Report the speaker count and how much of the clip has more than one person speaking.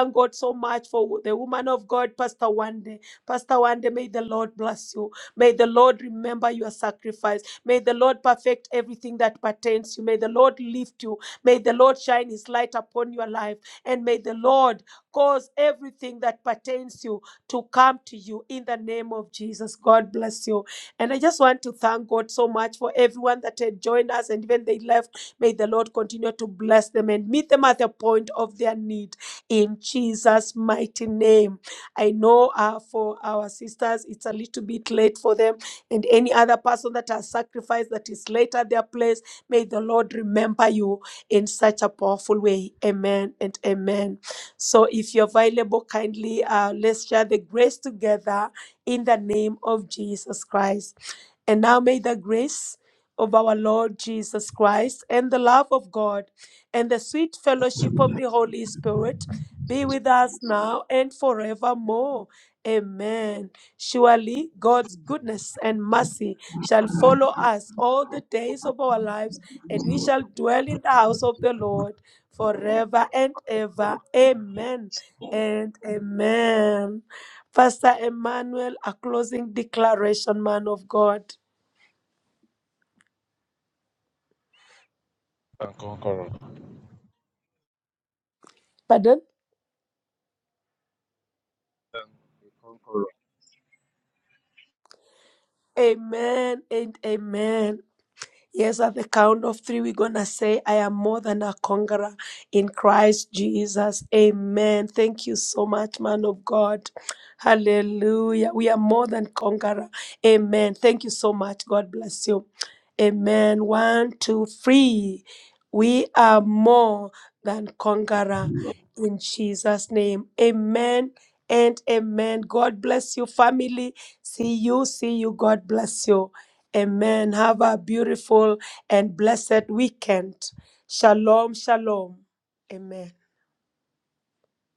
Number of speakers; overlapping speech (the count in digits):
2, no overlap